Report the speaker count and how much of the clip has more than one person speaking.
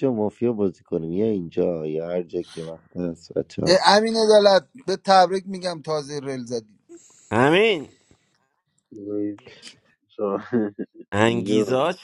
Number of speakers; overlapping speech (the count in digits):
4, about 4%